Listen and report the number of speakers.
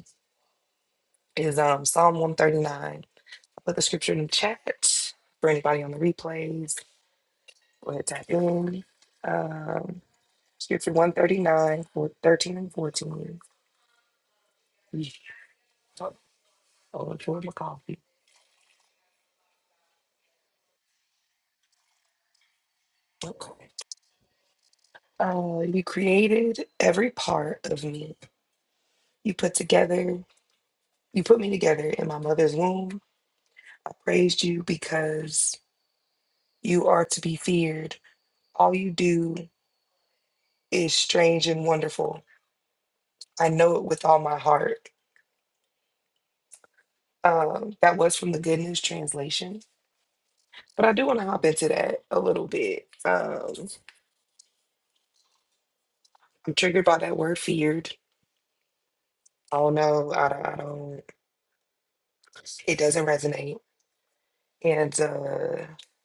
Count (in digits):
1